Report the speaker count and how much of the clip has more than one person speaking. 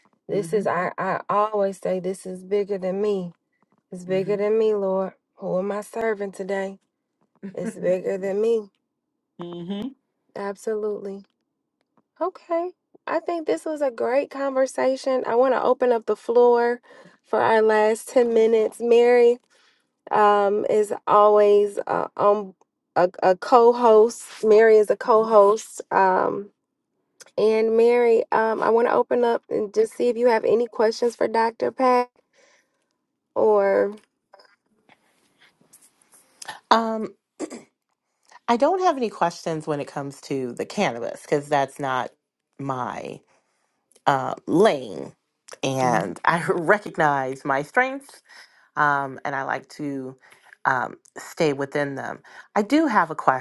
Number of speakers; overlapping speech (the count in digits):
3, about 2%